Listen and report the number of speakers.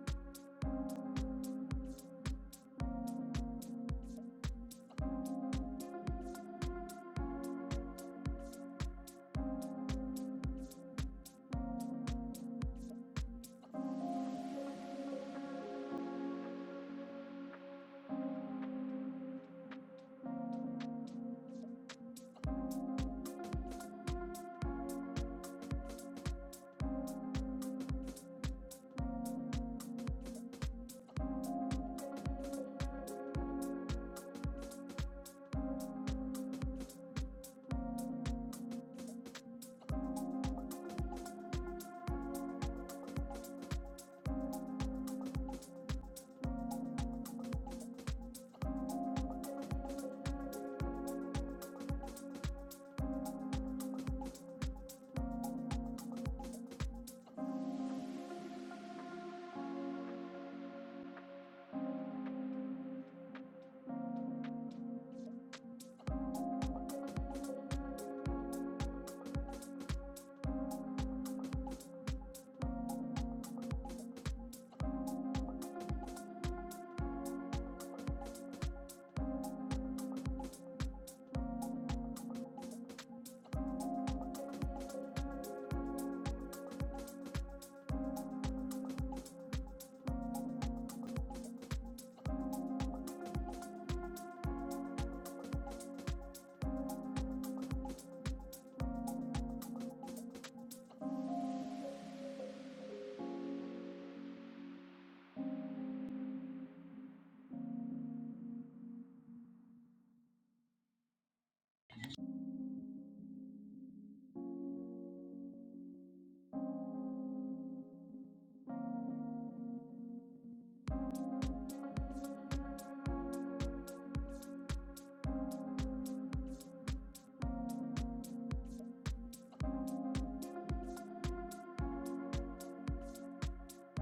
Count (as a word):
zero